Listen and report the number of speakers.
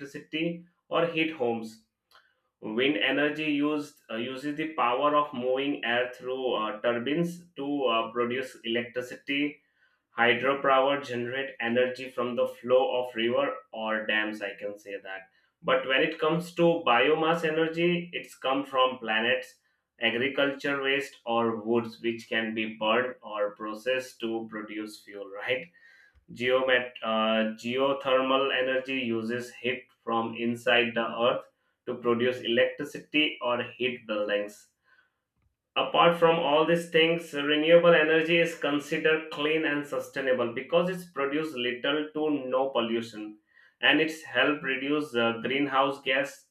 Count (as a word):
one